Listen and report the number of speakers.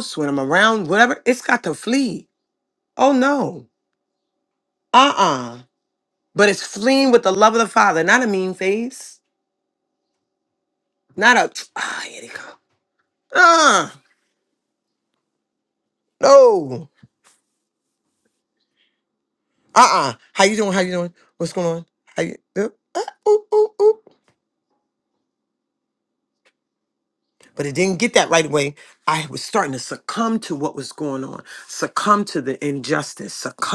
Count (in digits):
1